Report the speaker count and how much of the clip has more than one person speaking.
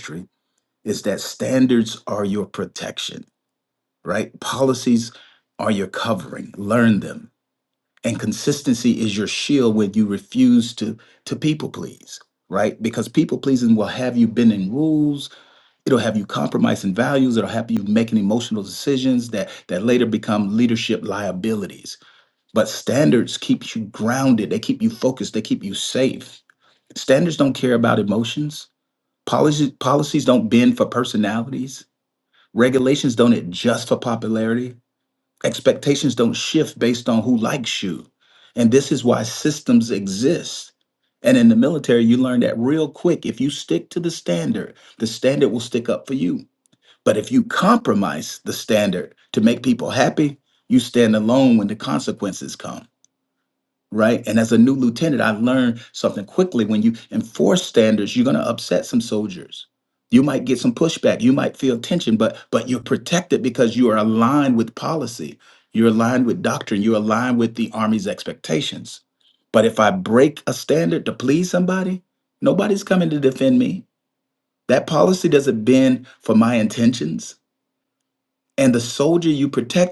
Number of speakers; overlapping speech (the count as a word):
one, no overlap